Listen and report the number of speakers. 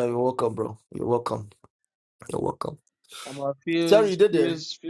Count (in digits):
2